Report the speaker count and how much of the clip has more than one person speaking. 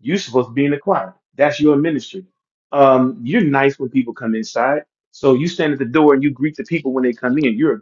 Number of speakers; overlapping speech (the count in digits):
1, no overlap